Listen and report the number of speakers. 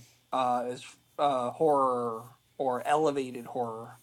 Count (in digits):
1